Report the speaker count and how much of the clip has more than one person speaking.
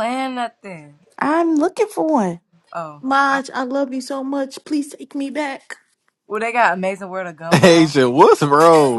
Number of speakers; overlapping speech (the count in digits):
4, about 10%